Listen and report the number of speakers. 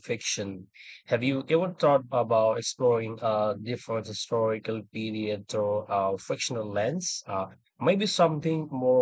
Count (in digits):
1